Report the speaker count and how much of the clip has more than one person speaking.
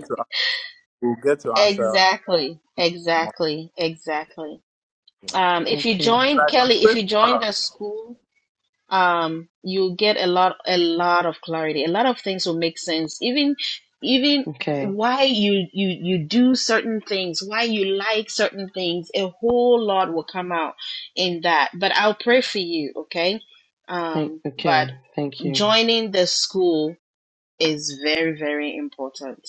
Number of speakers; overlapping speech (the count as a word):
three, about 12%